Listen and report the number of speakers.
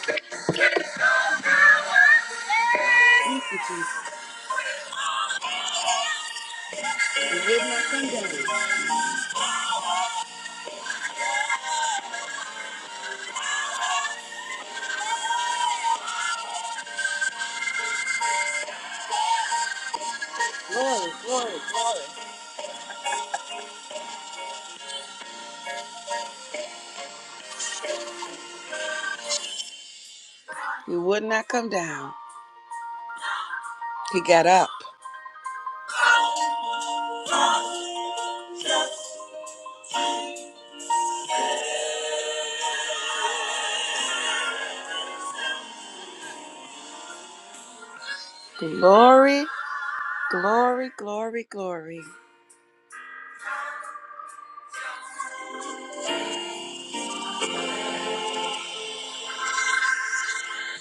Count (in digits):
1